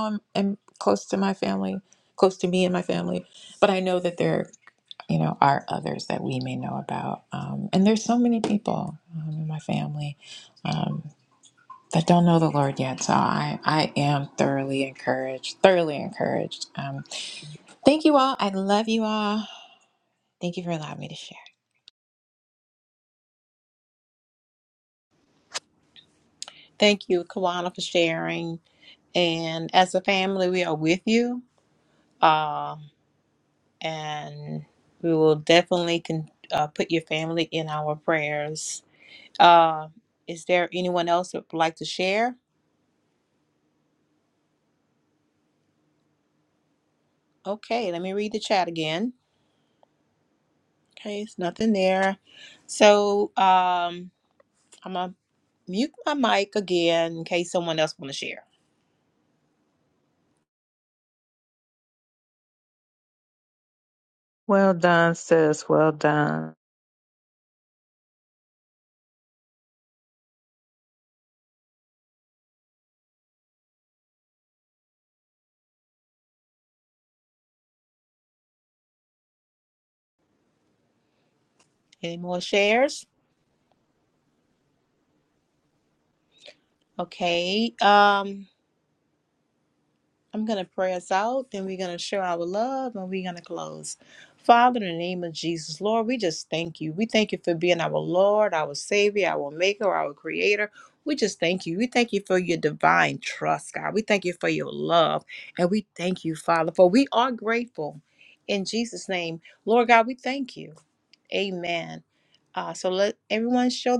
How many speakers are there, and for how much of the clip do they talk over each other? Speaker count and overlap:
3, no overlap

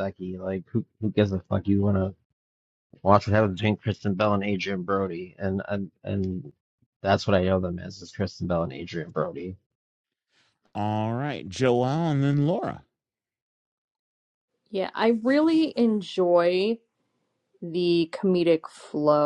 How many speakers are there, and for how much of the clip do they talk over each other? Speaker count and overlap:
3, no overlap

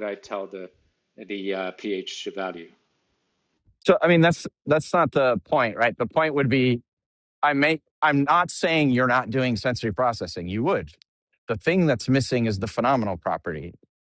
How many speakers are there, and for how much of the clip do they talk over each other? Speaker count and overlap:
2, no overlap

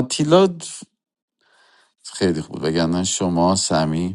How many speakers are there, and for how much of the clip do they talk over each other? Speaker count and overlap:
1, no overlap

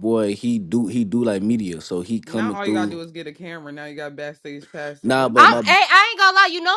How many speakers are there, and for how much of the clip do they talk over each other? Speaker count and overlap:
3, about 20%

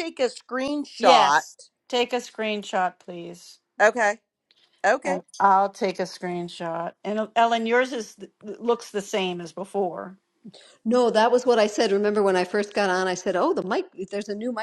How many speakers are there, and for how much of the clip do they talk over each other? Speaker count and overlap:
3, about 3%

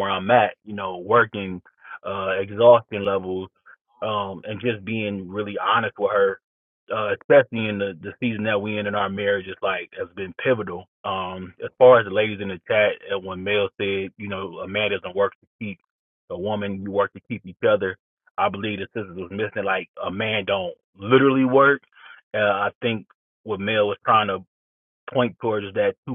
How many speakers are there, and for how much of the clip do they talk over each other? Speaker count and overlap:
1, no overlap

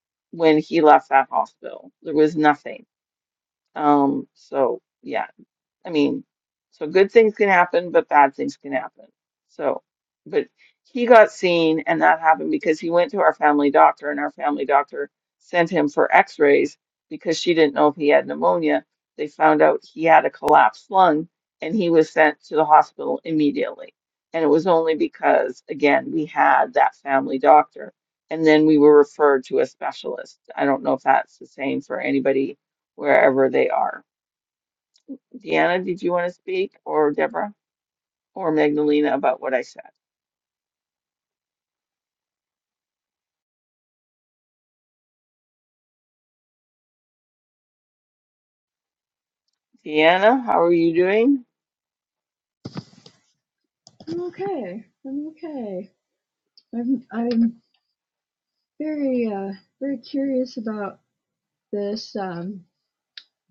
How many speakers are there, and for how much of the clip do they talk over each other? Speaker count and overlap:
2, no overlap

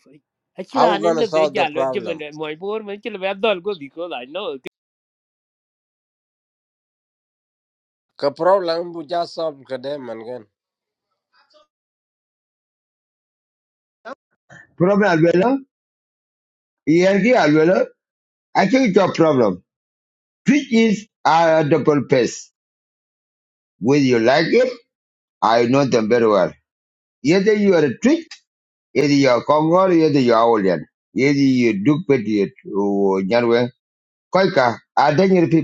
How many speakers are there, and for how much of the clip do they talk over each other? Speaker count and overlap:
3, about 4%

